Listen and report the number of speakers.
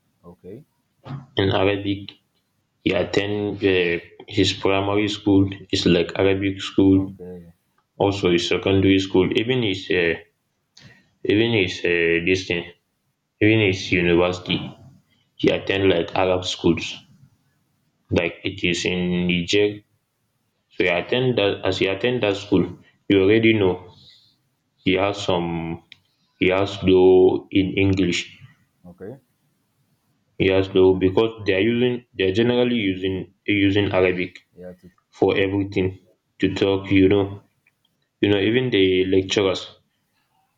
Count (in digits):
2